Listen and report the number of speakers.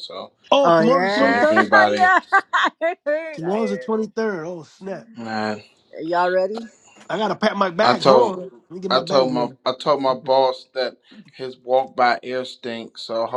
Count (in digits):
3